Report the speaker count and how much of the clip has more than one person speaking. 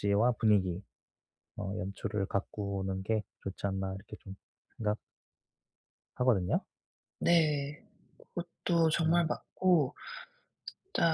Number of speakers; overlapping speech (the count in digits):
2, about 2%